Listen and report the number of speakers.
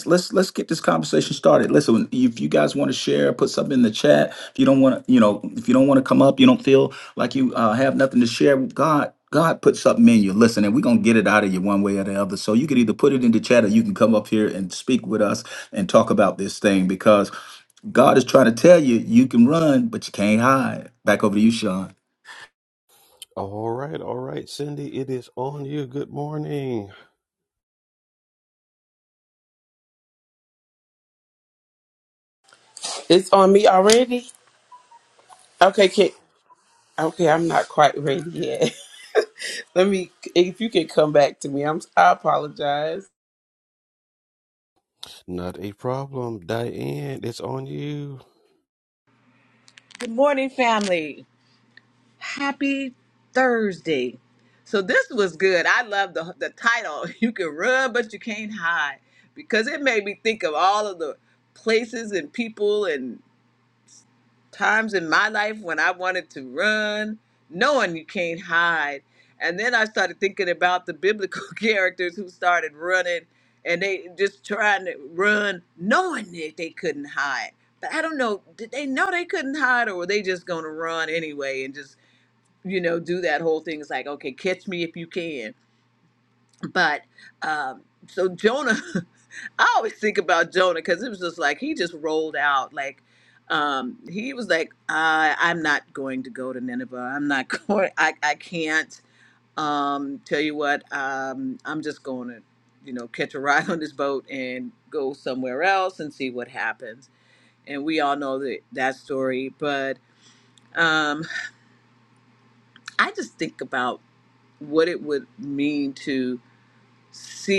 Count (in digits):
4